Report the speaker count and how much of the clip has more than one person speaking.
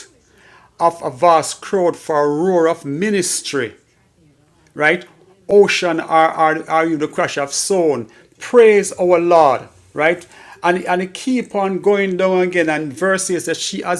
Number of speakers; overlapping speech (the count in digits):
1, no overlap